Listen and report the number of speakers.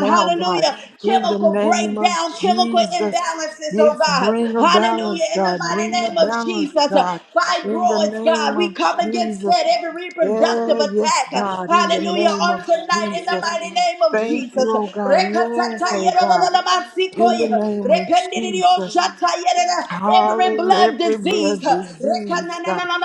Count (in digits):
2